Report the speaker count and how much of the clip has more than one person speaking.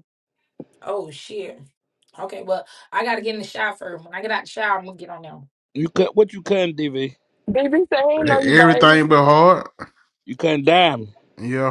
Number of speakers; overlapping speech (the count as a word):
four, about 6%